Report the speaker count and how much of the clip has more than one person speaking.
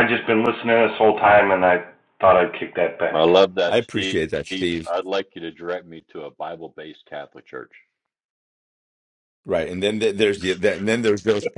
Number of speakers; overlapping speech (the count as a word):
three, about 9%